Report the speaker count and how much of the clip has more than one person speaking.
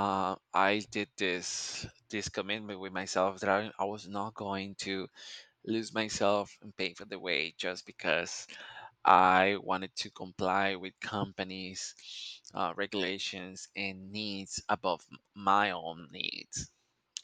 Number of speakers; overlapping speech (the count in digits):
1, no overlap